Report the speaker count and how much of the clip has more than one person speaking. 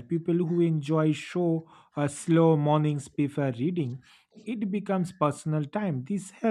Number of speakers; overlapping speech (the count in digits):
1, no overlap